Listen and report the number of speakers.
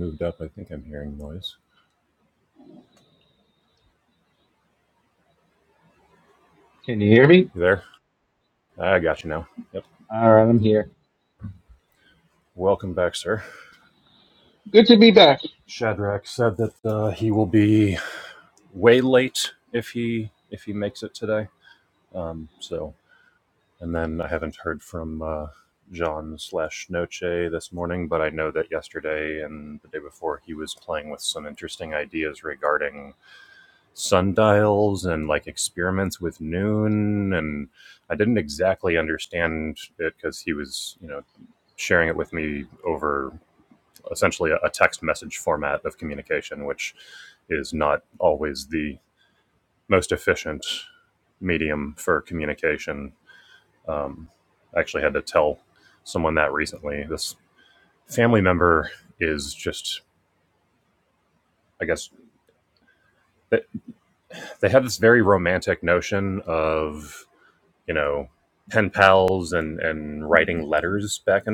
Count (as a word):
two